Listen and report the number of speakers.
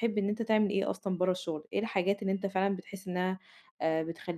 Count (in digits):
1